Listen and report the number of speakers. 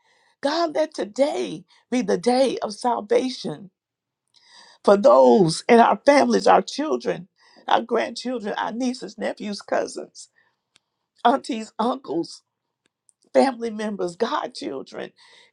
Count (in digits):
1